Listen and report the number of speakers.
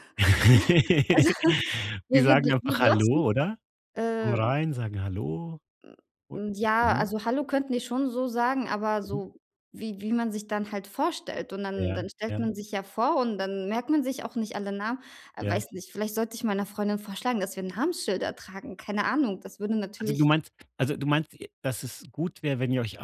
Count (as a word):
two